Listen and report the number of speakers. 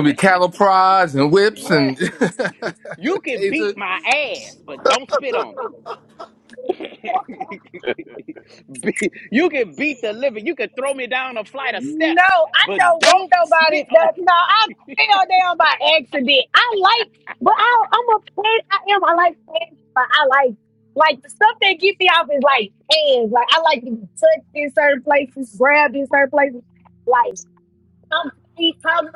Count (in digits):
3